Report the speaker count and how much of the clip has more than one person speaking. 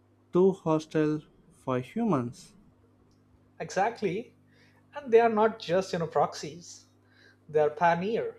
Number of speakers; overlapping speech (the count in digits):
2, no overlap